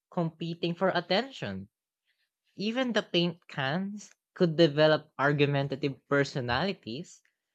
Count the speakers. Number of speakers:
1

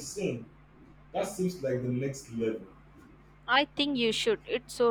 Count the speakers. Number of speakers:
2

